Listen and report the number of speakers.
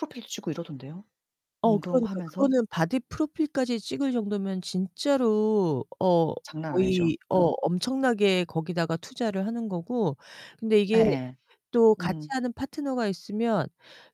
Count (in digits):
2